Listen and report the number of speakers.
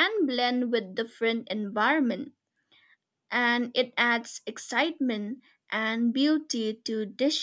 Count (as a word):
one